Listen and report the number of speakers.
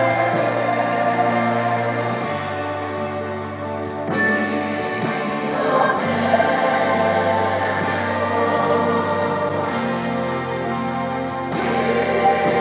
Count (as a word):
zero